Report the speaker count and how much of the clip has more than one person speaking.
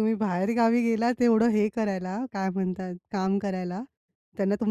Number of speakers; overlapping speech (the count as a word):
one, no overlap